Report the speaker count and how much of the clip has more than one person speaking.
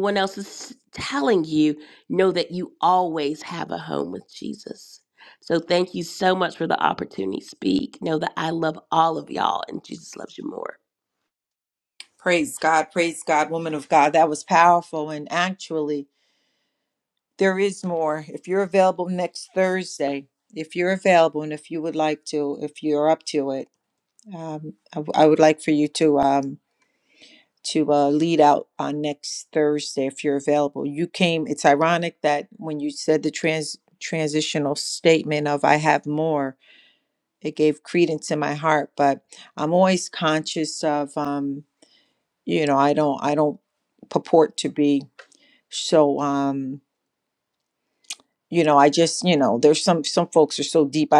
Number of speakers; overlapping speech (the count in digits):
2, no overlap